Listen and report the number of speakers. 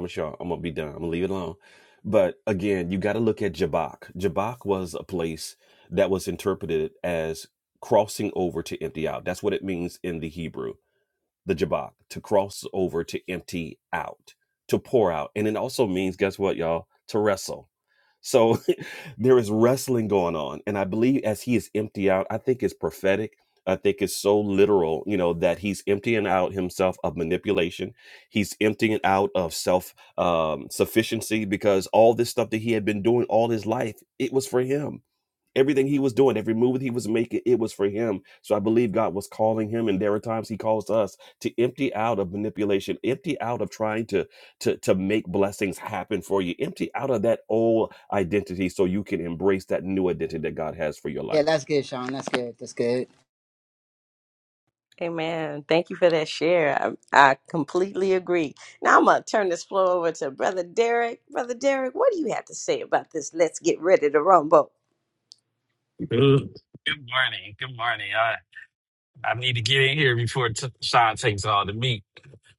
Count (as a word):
four